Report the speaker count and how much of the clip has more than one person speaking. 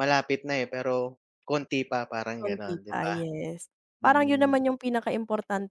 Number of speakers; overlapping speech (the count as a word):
two, about 14%